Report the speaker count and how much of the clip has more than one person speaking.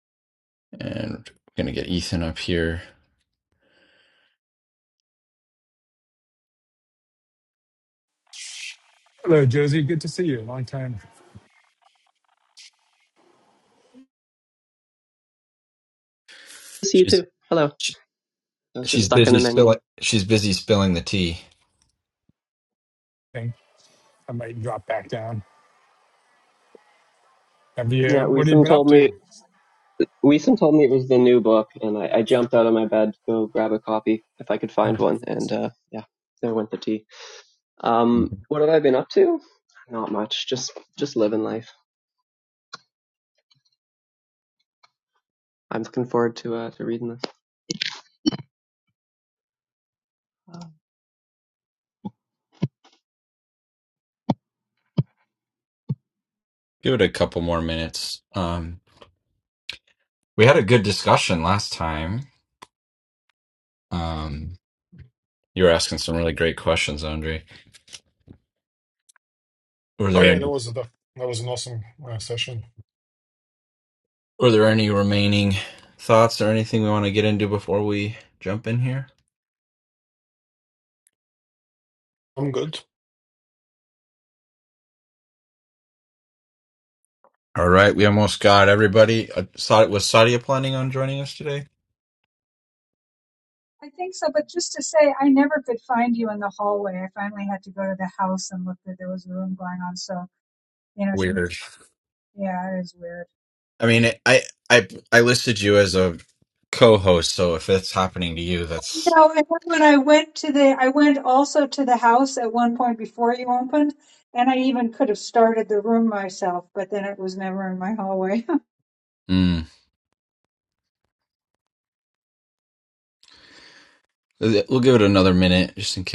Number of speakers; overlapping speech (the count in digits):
5, about 2%